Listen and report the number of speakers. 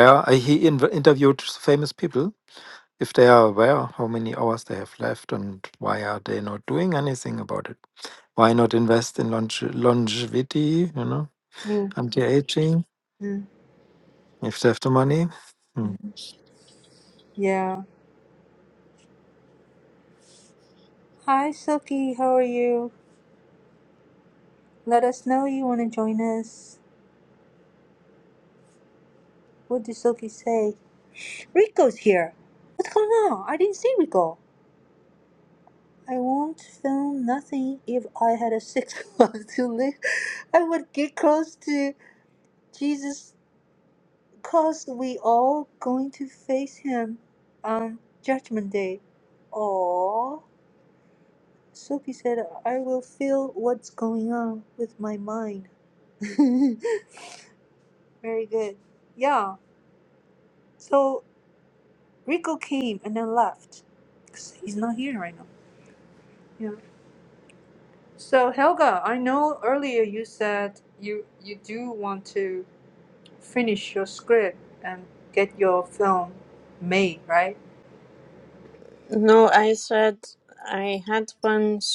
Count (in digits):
3